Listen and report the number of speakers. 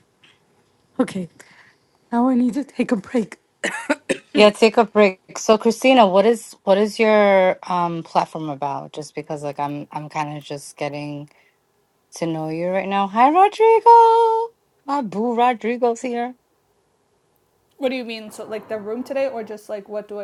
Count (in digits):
3